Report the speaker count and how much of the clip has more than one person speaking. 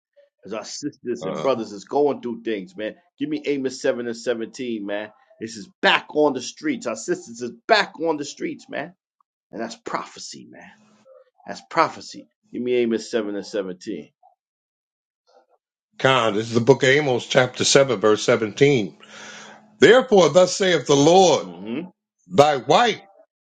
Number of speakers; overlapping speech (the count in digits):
2, about 1%